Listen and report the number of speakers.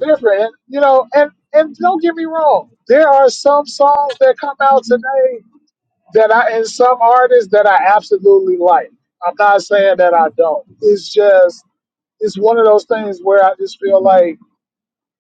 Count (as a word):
one